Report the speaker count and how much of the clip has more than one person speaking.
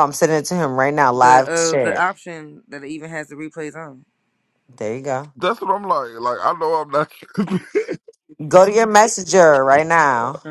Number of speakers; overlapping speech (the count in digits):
3, about 8%